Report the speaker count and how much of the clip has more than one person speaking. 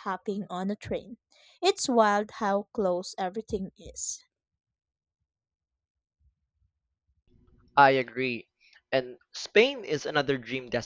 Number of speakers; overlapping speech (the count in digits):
2, no overlap